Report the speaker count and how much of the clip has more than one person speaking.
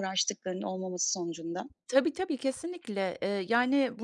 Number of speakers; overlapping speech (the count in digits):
2, no overlap